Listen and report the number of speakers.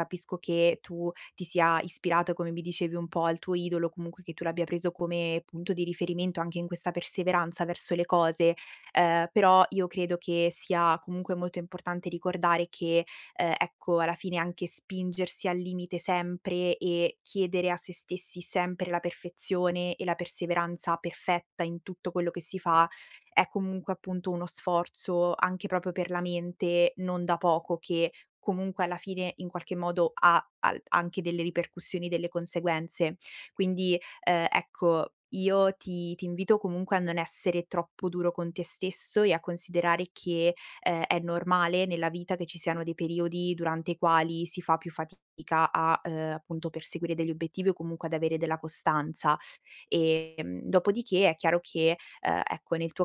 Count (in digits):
1